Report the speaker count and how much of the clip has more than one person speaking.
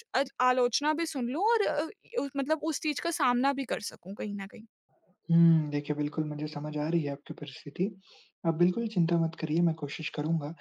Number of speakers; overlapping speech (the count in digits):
2, no overlap